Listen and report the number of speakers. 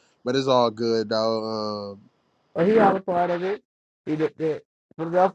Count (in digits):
2